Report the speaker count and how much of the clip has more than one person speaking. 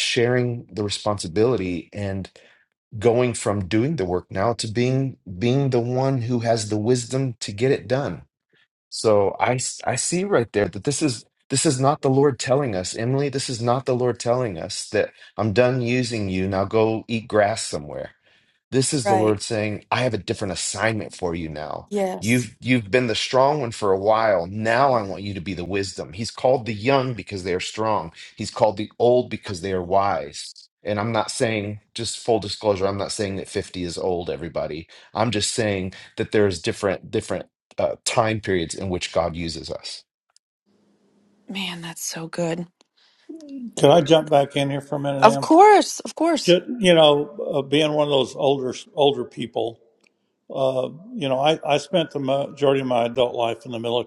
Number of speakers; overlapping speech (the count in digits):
3, about 1%